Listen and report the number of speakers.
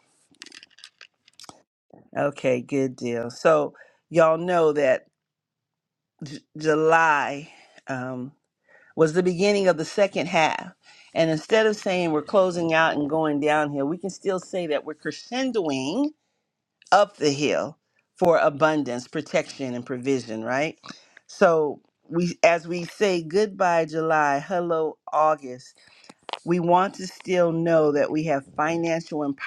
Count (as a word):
one